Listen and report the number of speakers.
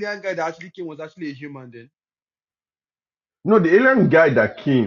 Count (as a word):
two